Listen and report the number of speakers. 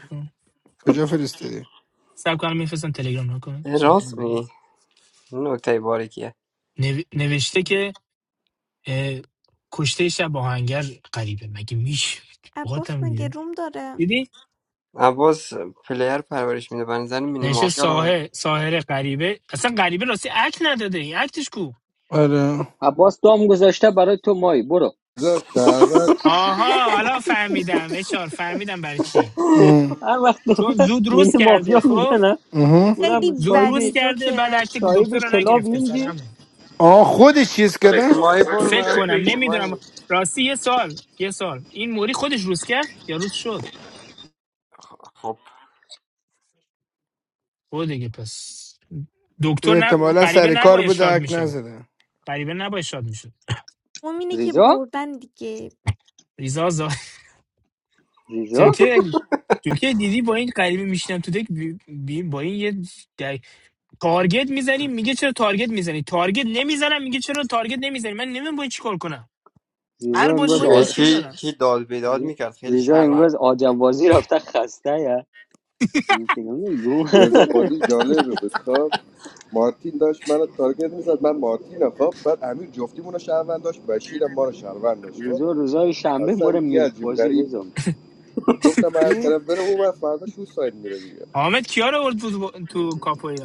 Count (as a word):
six